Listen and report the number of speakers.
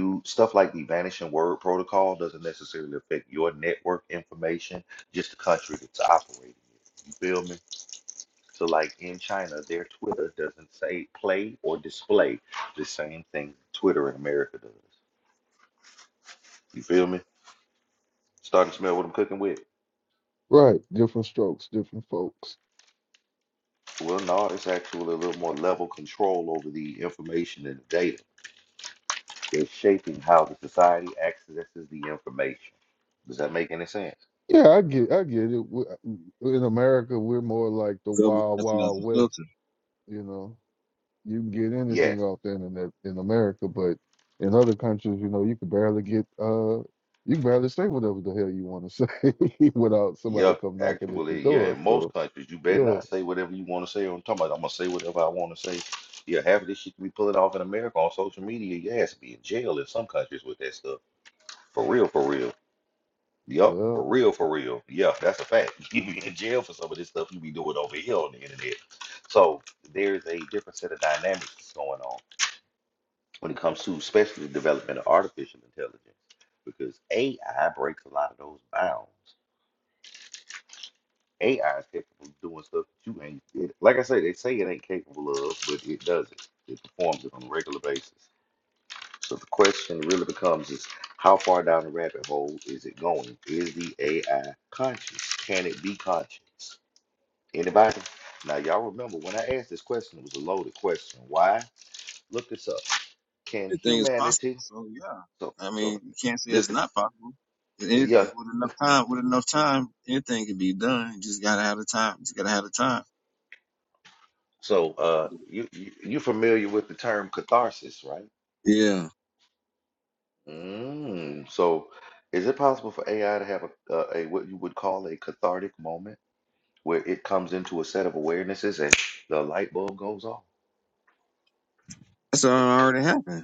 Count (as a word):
three